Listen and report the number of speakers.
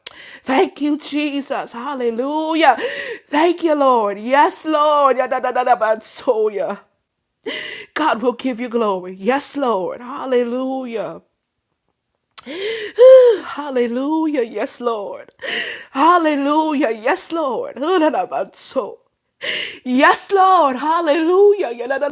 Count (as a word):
one